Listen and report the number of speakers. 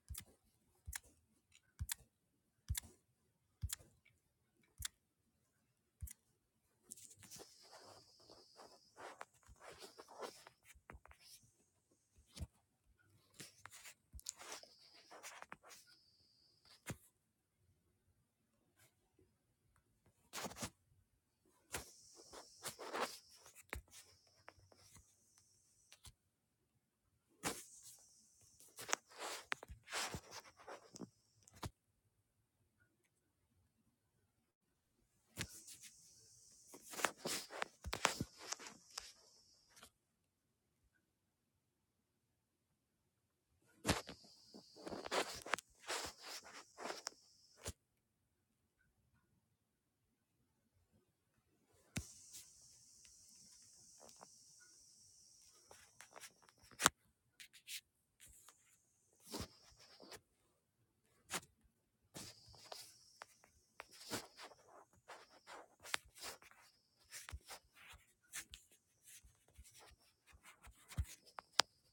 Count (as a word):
zero